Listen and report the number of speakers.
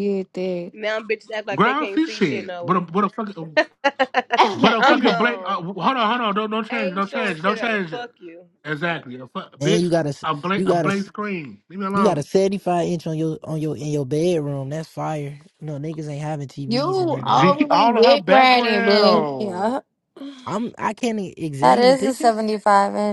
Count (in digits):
5